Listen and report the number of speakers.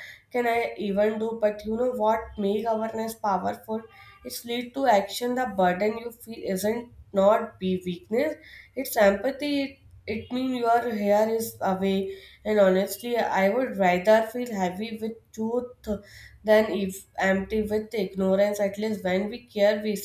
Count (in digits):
1